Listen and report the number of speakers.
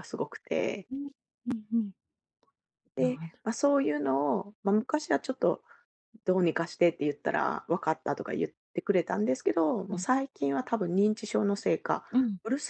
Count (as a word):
two